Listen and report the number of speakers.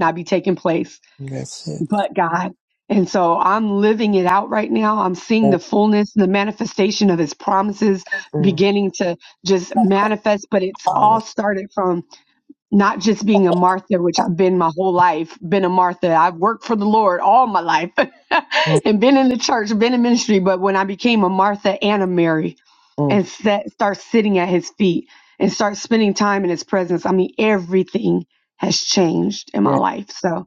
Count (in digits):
2